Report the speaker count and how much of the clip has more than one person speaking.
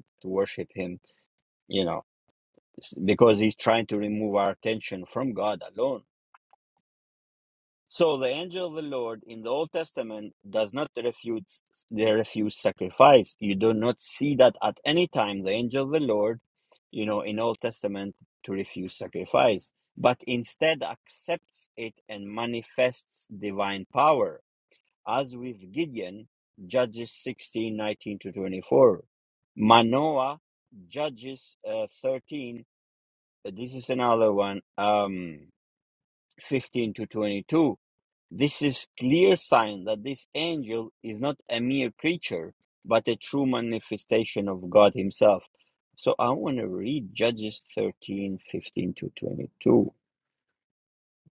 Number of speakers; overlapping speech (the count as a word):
one, no overlap